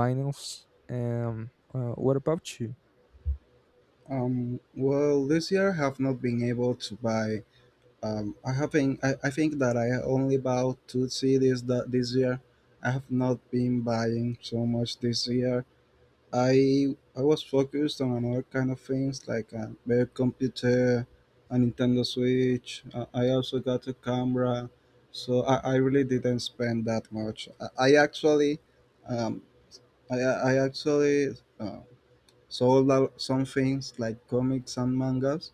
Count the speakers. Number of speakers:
2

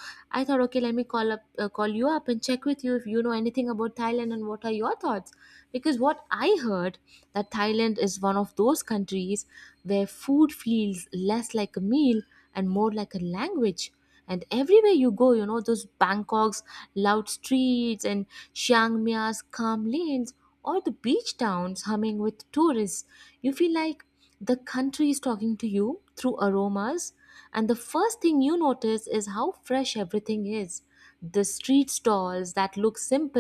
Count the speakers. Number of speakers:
1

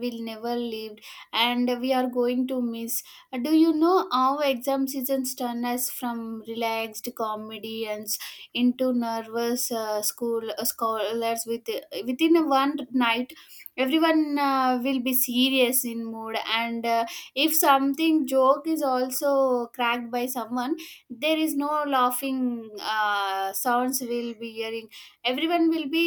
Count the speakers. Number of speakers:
1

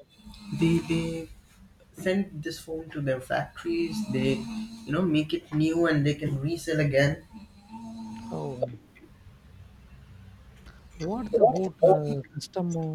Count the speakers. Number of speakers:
2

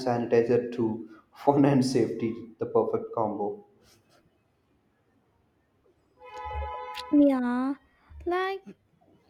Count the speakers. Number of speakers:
2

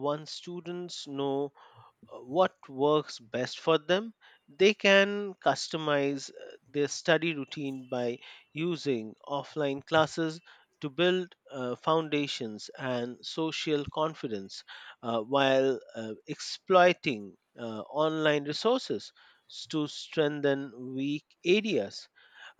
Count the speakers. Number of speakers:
1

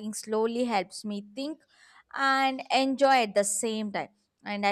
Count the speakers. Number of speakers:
1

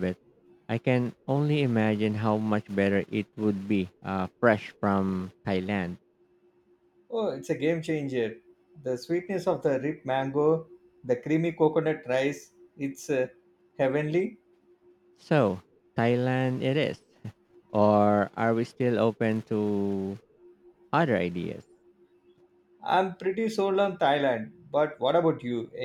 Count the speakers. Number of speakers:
2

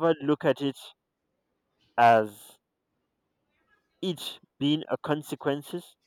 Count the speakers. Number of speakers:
1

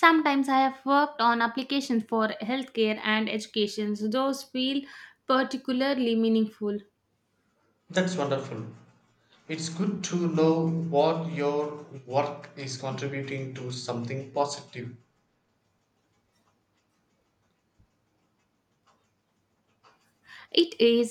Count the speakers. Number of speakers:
2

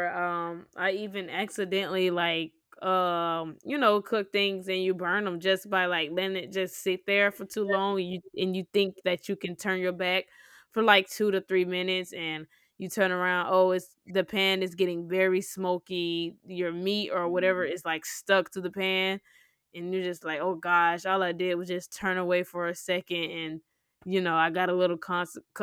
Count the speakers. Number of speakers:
1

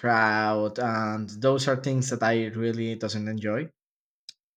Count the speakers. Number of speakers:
1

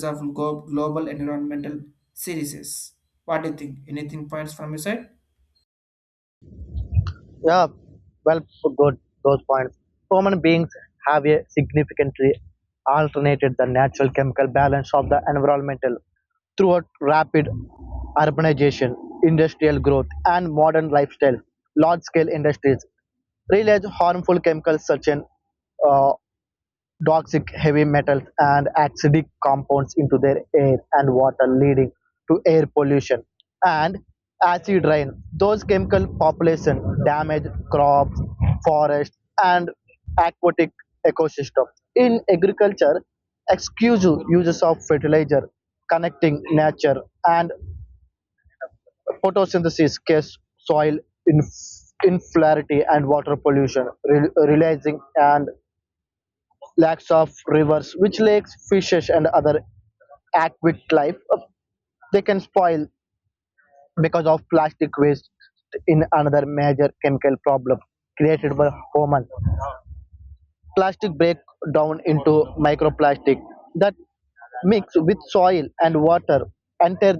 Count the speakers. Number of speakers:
2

